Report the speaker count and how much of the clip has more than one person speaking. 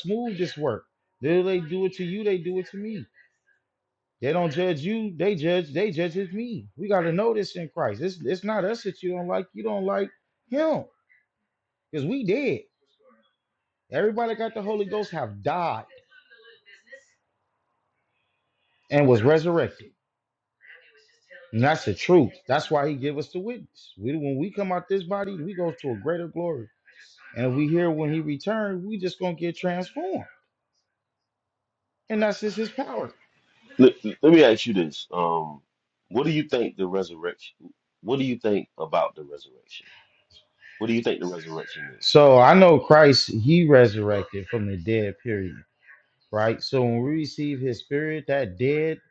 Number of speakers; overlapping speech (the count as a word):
two, under 1%